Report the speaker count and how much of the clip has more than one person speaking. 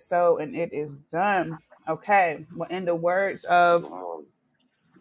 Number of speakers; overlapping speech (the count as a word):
one, no overlap